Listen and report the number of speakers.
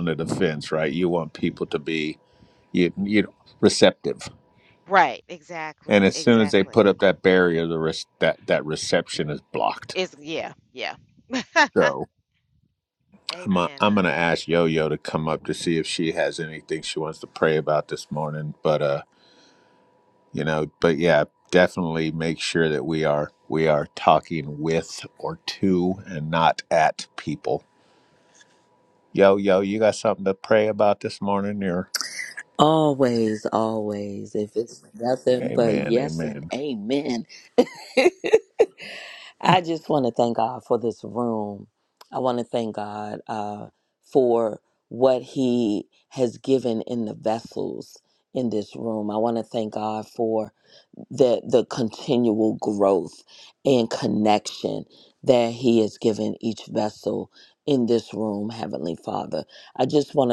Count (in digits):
3